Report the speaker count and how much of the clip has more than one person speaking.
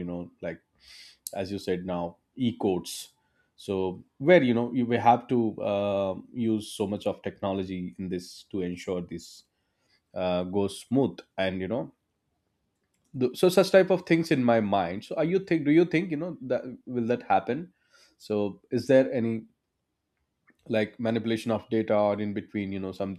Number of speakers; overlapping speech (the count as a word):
one, no overlap